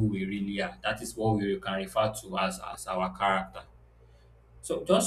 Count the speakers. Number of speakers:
1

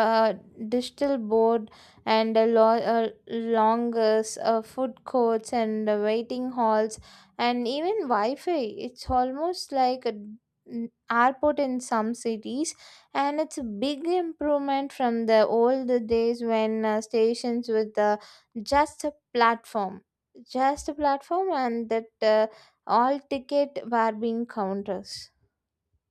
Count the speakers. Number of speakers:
1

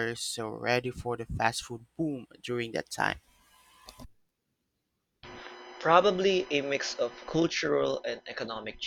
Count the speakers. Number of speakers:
2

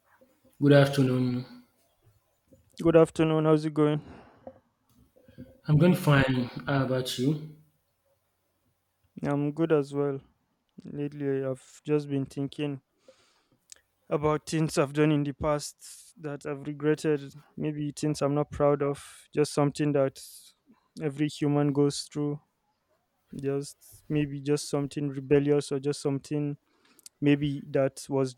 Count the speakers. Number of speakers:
2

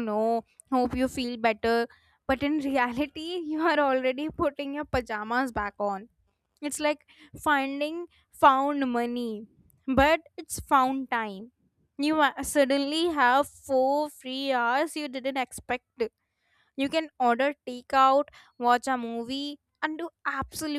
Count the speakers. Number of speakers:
1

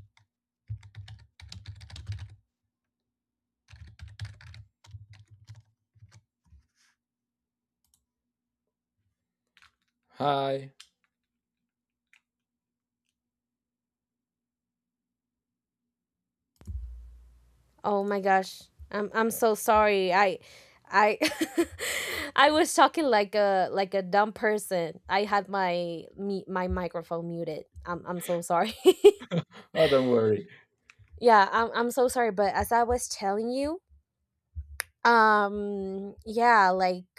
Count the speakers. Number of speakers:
2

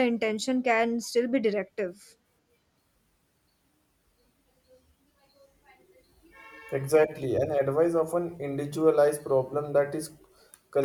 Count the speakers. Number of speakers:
2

